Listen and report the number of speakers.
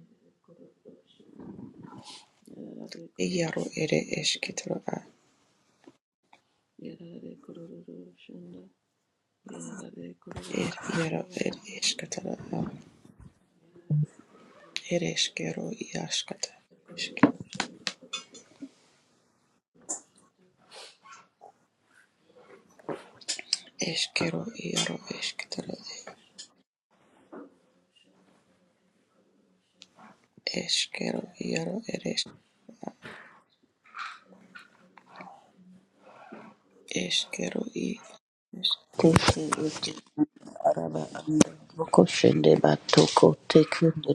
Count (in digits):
3